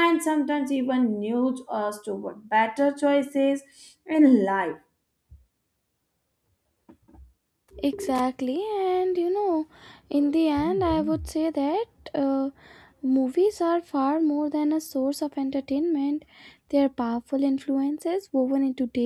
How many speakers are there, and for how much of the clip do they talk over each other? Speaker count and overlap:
2, no overlap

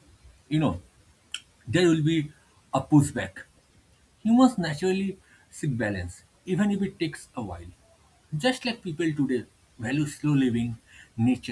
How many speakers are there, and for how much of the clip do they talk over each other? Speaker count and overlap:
1, no overlap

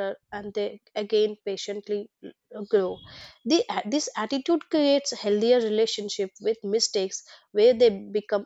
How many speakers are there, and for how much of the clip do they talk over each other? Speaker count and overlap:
1, no overlap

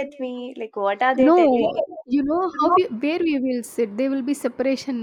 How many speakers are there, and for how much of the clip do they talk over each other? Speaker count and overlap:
2, about 11%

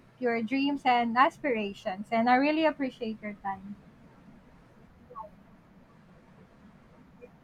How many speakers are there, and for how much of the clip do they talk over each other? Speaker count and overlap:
1, no overlap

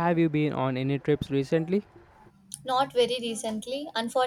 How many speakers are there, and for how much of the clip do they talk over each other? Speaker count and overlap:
2, no overlap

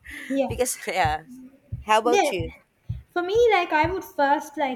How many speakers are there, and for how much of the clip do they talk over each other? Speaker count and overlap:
2, about 9%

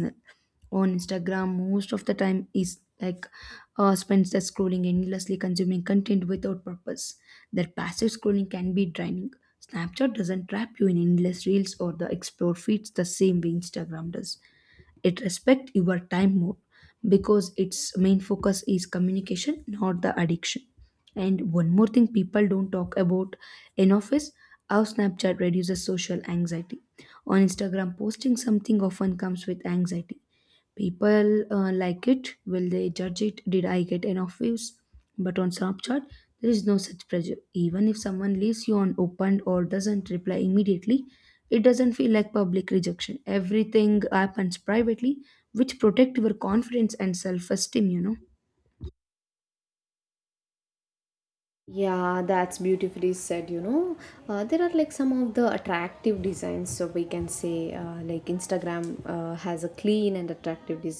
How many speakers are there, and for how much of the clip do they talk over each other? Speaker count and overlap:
2, no overlap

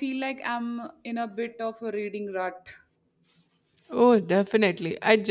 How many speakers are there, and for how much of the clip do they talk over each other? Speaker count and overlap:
2, no overlap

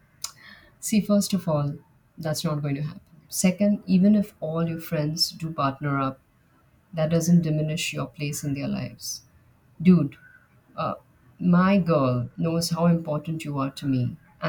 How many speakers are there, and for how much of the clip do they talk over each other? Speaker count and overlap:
1, no overlap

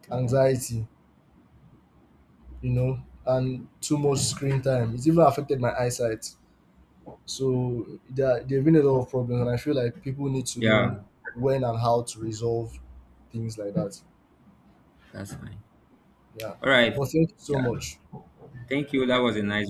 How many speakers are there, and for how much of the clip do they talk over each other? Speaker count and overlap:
2, about 4%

